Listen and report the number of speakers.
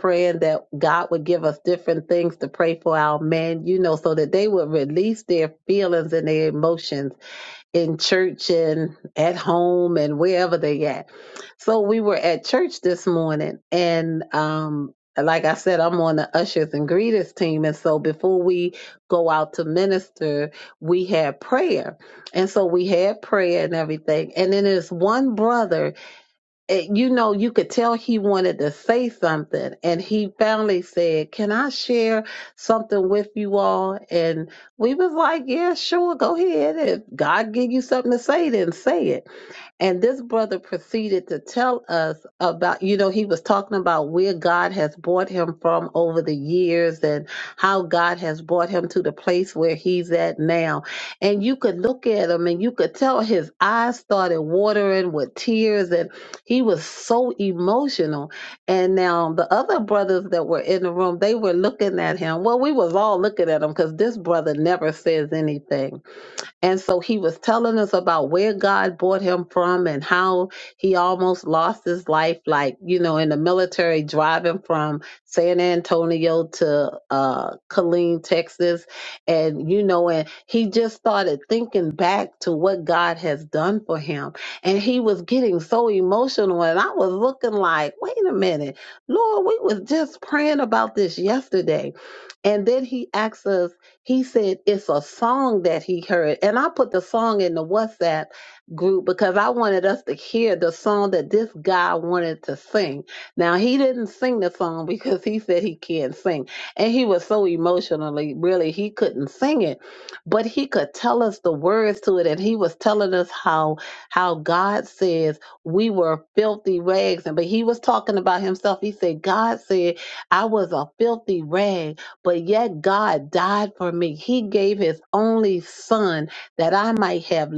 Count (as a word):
one